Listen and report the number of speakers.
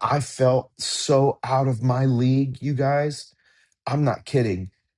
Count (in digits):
1